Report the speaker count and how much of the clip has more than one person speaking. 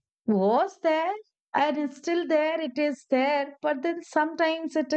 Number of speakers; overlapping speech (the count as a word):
one, no overlap